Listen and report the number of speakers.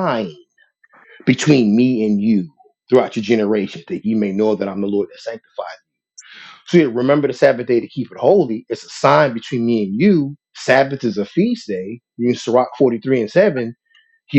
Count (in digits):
1